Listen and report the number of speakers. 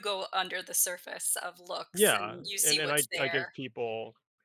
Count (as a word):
two